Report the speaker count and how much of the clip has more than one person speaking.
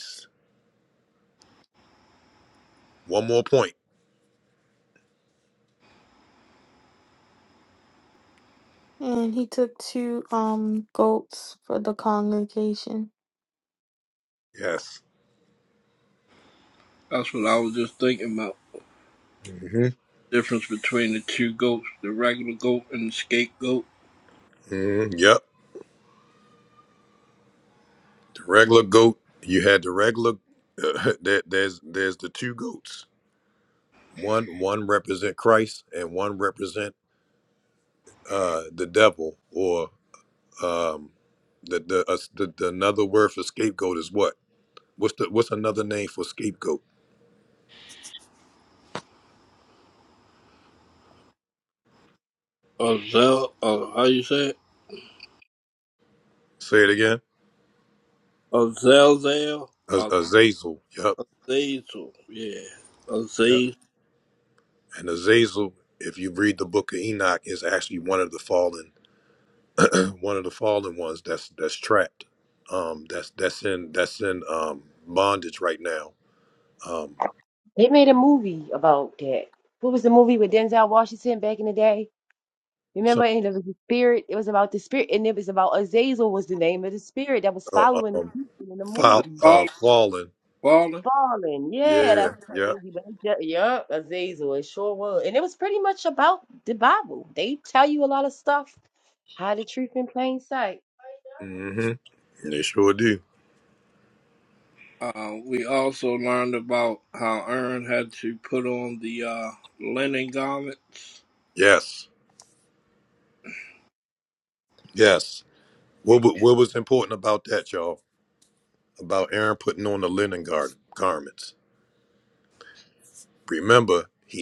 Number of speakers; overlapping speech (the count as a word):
four, about 2%